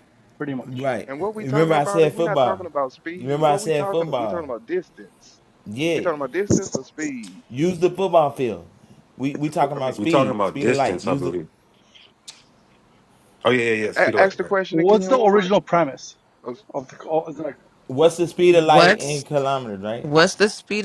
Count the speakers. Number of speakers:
5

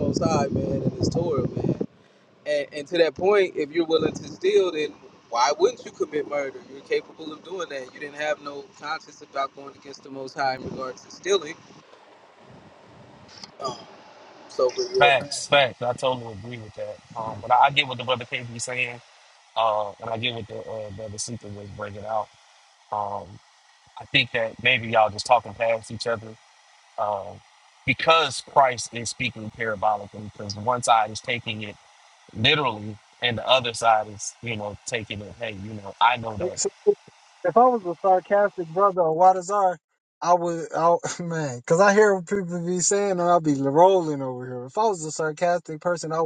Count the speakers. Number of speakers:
3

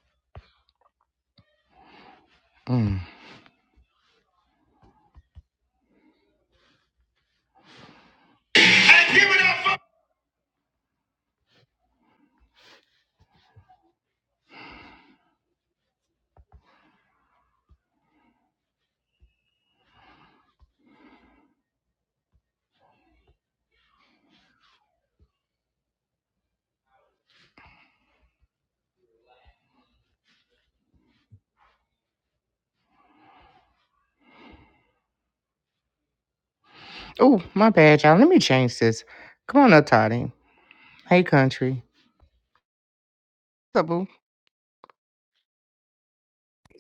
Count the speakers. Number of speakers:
1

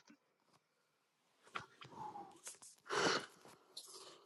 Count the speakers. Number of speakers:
0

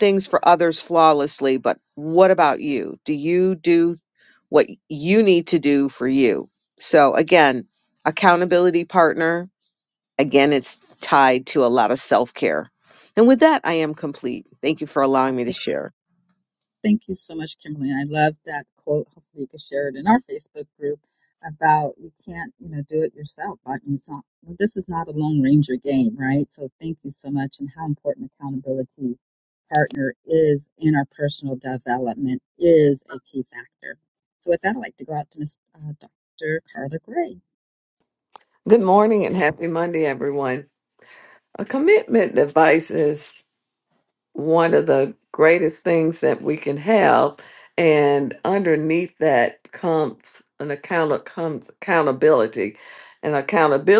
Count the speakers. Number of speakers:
3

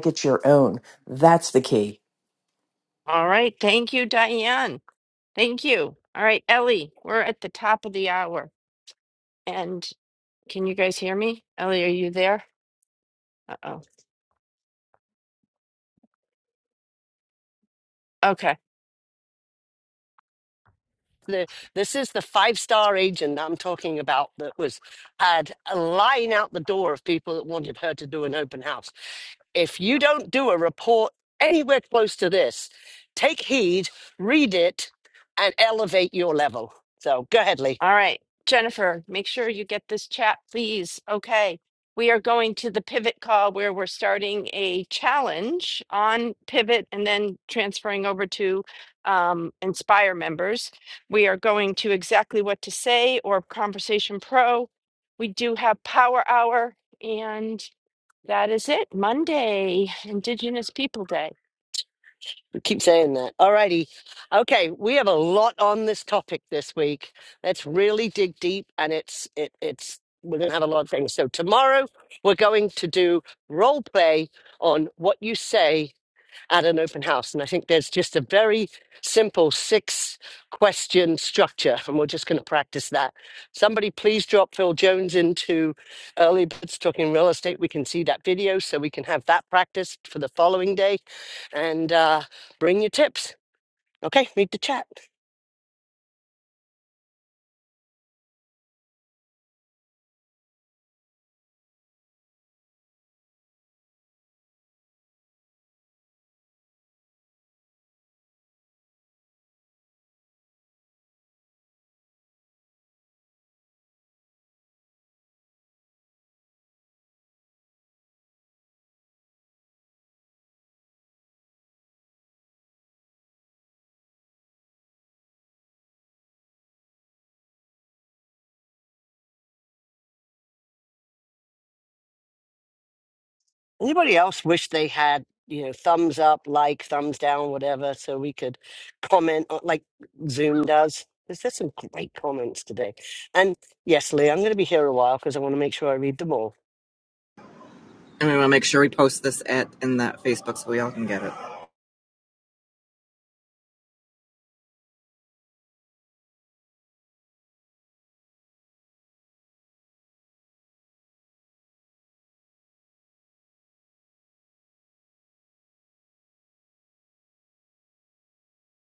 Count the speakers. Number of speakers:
4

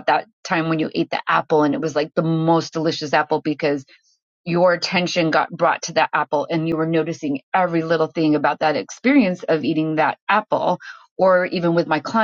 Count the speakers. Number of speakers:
1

